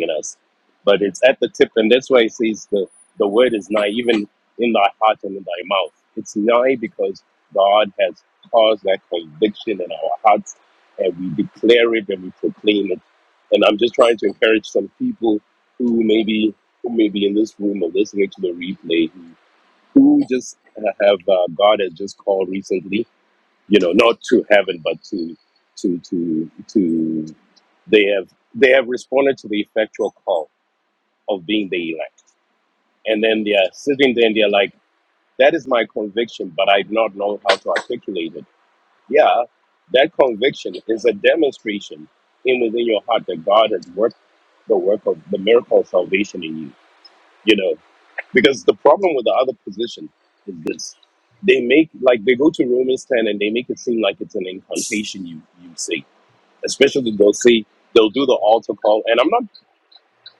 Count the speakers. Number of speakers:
1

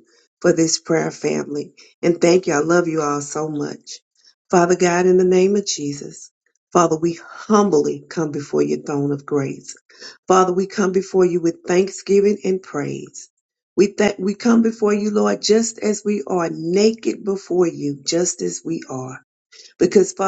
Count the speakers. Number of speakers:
1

